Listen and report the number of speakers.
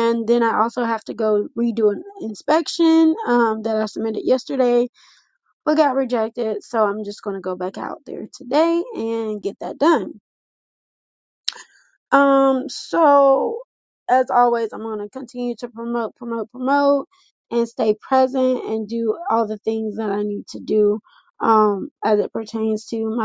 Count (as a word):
one